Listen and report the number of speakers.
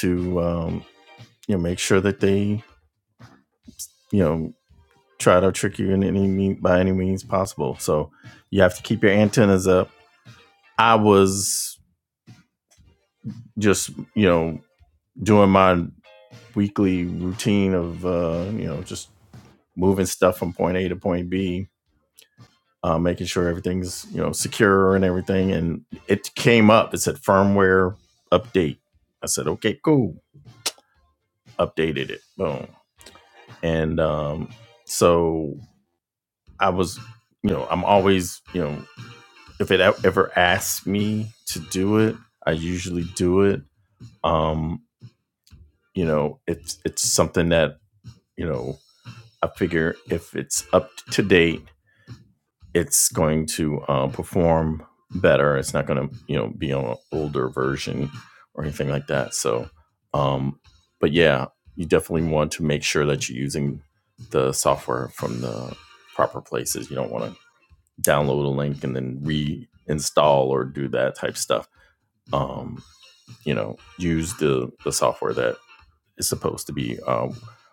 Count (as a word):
one